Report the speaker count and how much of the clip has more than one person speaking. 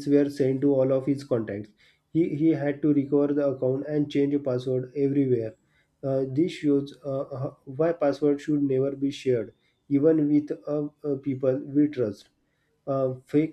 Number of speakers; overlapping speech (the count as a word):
one, no overlap